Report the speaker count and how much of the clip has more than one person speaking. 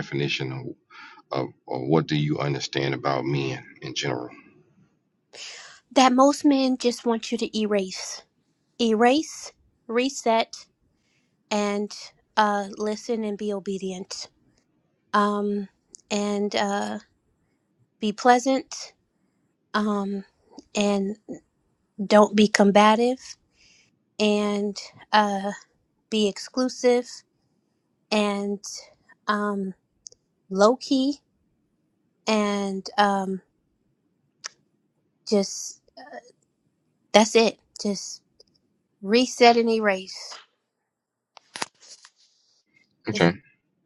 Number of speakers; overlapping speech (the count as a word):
two, under 1%